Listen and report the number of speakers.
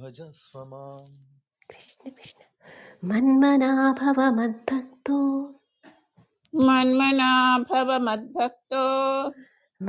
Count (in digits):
3